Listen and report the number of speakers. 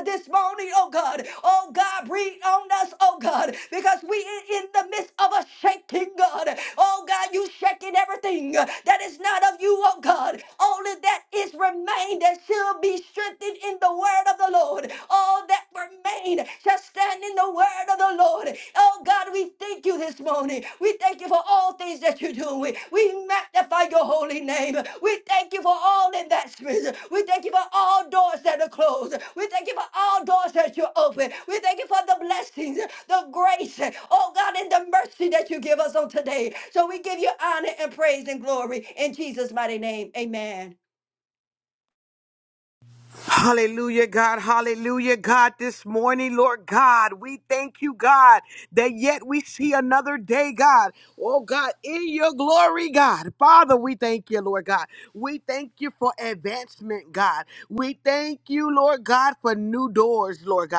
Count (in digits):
2